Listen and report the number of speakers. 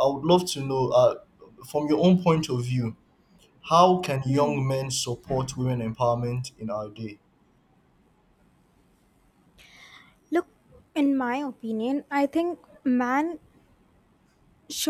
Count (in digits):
2